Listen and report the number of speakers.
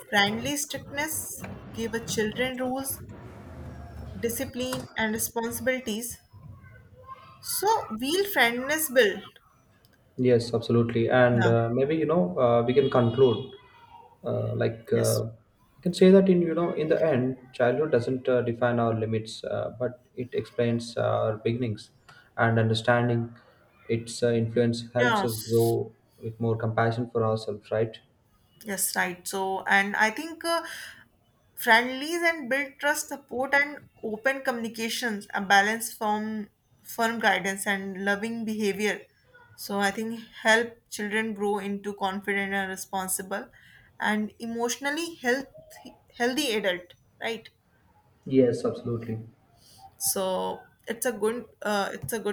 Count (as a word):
two